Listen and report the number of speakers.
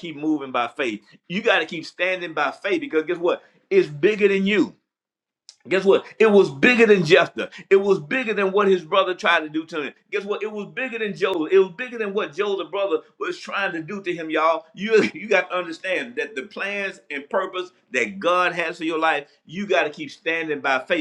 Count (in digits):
1